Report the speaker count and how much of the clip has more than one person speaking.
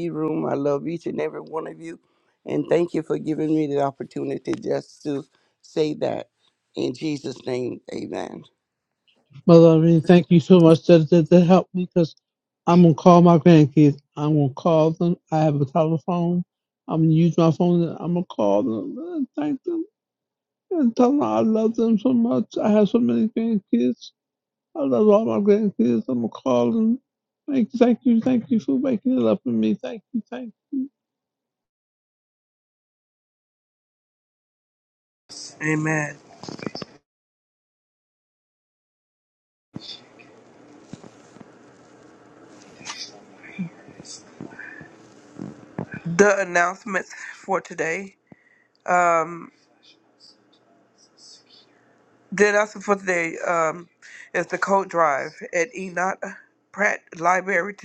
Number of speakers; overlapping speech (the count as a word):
three, no overlap